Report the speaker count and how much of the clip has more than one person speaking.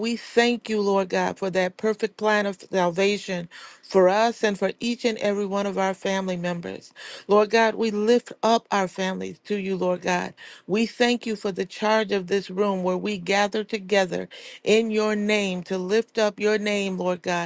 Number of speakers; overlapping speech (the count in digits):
1, no overlap